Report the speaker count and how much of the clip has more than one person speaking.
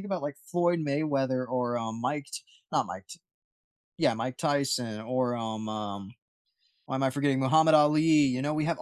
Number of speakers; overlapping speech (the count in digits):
1, no overlap